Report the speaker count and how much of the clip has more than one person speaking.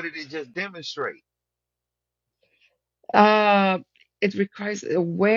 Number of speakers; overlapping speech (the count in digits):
2, no overlap